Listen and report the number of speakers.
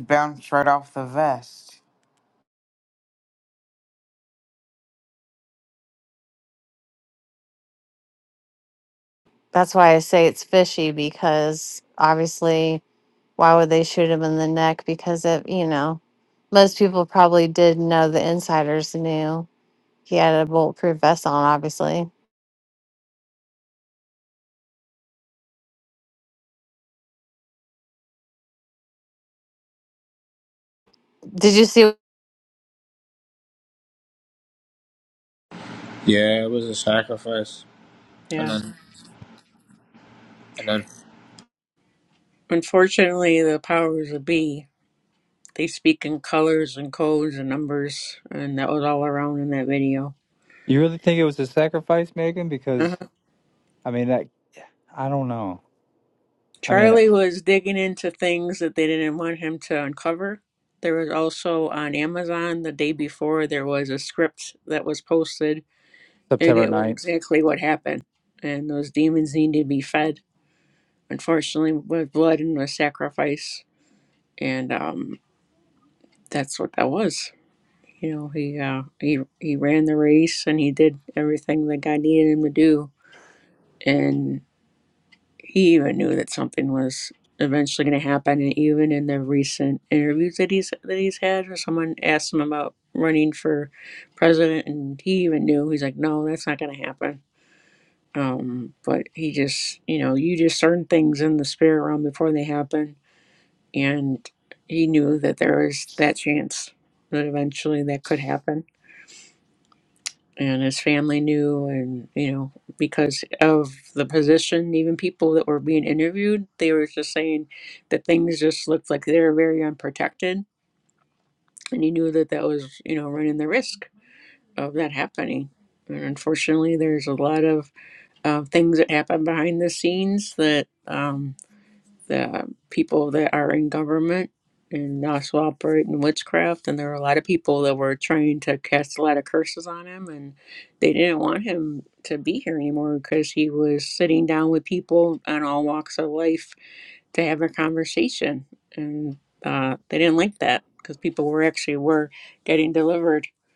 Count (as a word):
five